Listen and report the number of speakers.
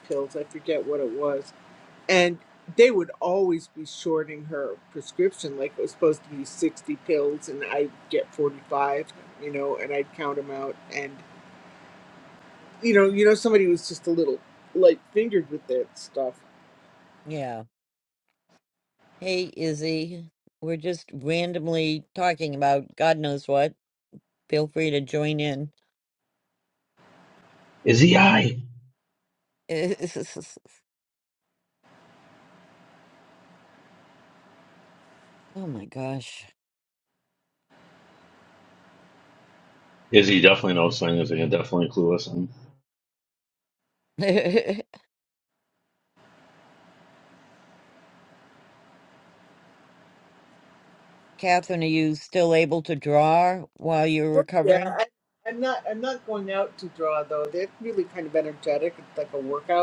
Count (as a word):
three